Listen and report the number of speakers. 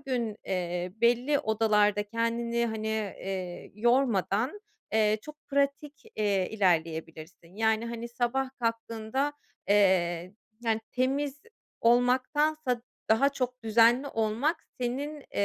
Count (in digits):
1